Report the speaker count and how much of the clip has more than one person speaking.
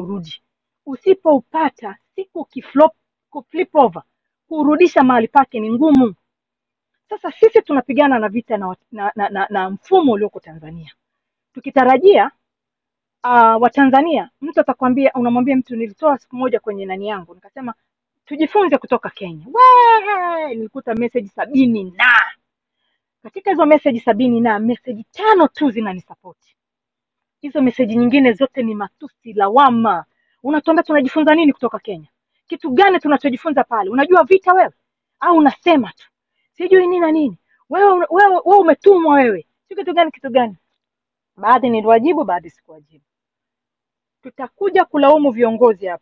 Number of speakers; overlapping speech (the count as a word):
one, no overlap